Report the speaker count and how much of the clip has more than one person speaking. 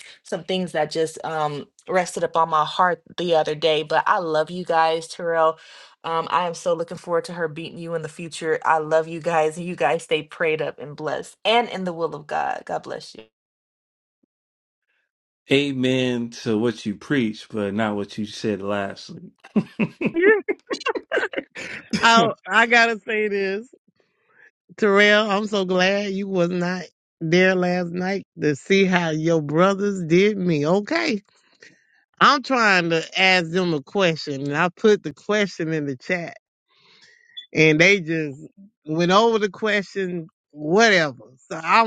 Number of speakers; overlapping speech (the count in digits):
3, no overlap